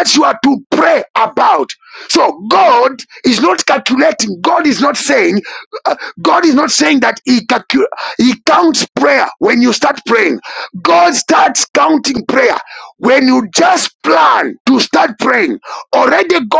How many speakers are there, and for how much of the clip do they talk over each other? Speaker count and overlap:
1, no overlap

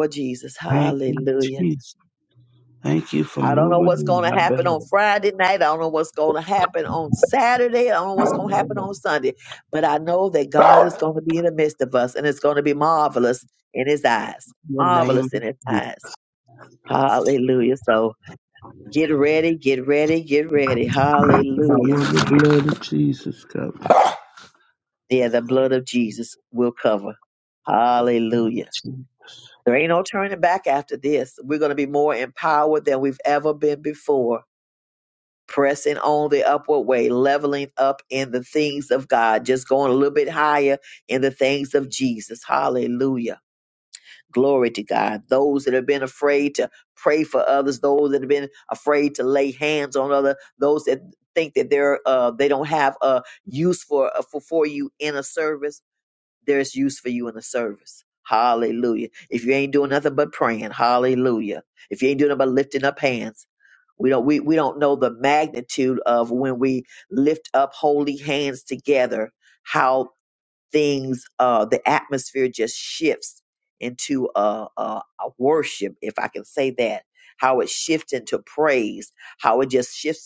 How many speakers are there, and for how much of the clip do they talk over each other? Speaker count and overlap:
2, about 6%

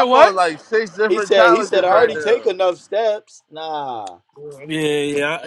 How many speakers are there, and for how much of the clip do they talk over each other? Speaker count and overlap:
3, about 27%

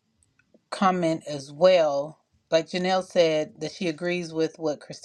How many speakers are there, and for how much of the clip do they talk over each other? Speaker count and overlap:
1, no overlap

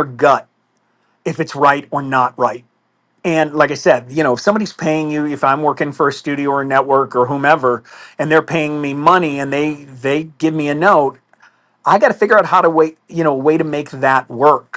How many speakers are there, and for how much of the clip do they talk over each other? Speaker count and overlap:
1, no overlap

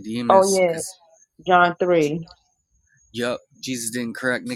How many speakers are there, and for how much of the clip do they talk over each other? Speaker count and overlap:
2, about 12%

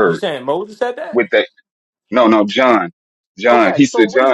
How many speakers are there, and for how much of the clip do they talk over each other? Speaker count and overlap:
2, about 24%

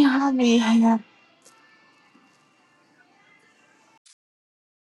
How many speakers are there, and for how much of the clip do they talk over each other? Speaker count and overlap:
1, no overlap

